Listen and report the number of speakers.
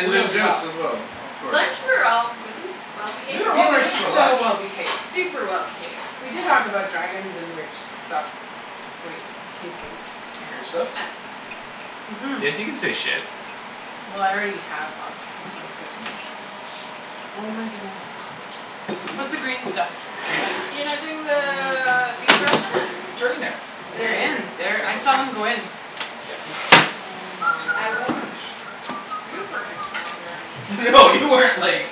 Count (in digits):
4